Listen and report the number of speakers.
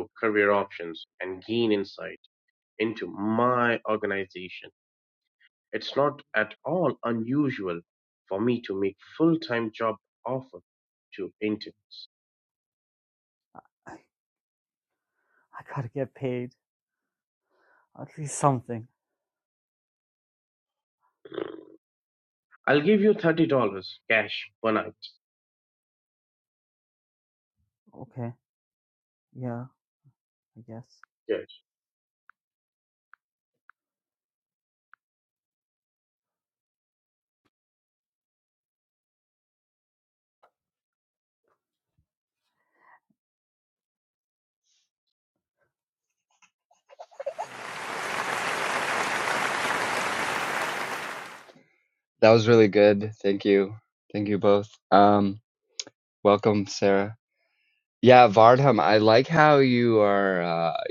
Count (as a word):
three